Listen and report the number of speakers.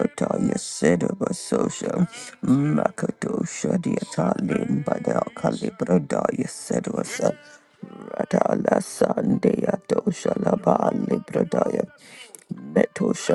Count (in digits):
1